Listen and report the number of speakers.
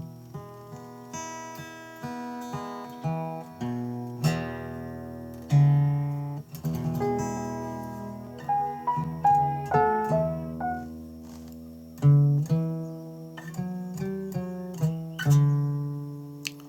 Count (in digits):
0